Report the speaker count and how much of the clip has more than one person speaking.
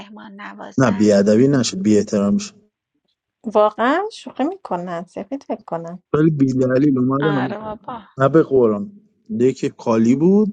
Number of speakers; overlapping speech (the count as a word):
three, about 6%